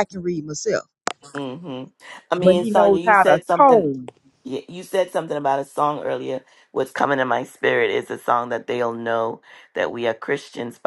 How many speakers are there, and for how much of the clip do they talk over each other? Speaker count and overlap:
2, about 13%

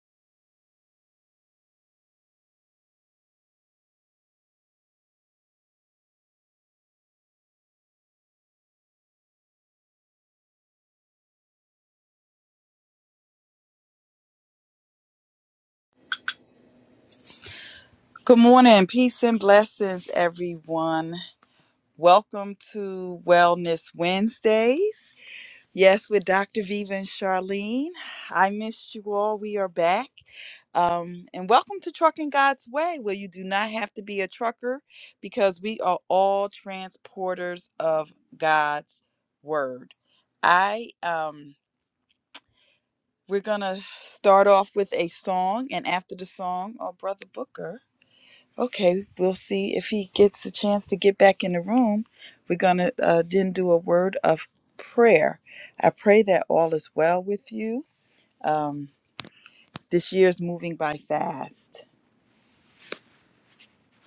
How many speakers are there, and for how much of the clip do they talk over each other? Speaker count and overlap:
1, no overlap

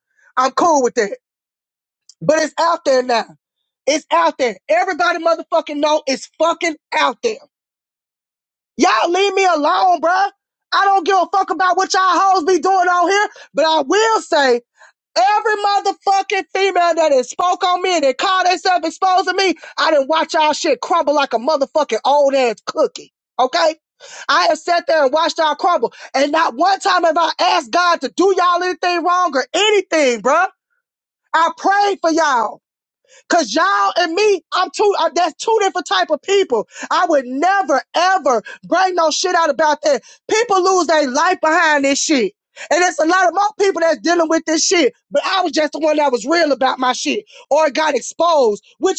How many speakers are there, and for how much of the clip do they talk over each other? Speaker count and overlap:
1, no overlap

